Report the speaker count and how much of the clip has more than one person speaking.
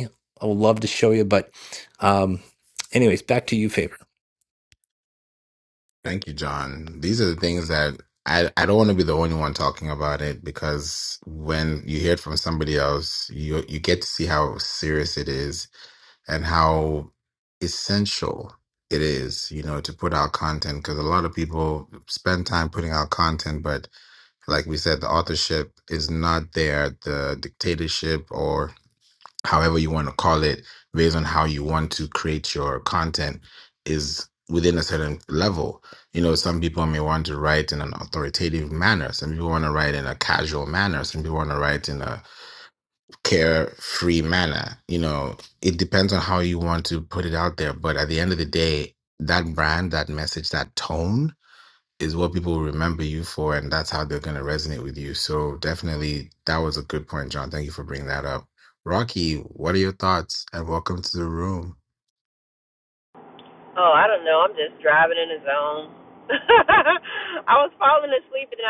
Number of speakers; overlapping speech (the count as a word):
three, no overlap